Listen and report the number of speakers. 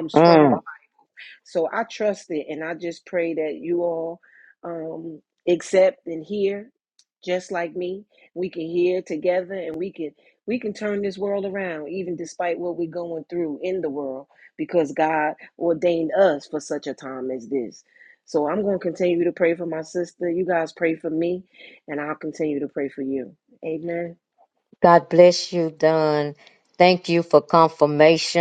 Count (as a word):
two